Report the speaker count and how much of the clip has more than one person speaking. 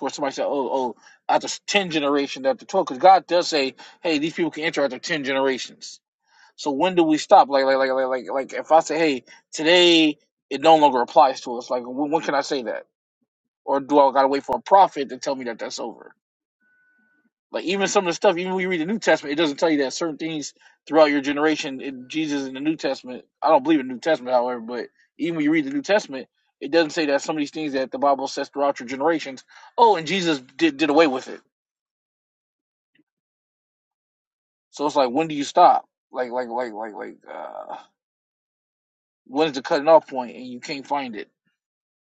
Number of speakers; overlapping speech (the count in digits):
1, no overlap